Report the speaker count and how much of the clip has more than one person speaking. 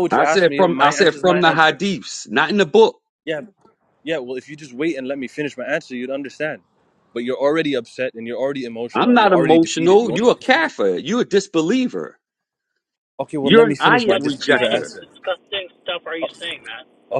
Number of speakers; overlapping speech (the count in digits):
3, about 30%